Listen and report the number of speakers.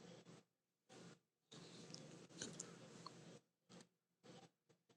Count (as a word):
zero